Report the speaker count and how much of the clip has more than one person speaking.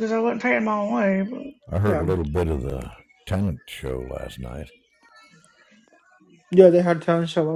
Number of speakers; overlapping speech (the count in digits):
3, about 3%